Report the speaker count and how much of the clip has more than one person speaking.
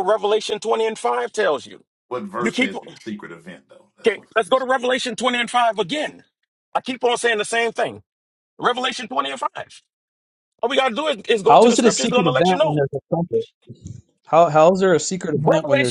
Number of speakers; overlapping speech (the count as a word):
three, about 15%